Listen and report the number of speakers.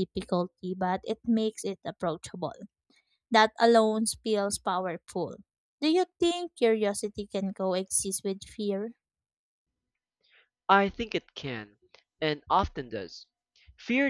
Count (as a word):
two